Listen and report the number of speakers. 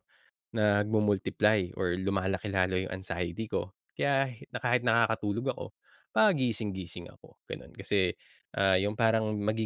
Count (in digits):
1